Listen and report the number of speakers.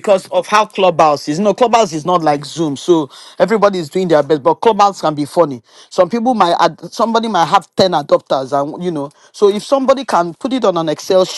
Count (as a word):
one